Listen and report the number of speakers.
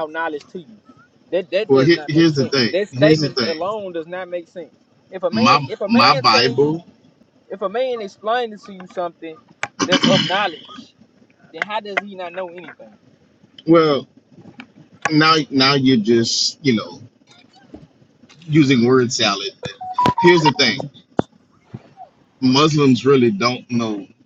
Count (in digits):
2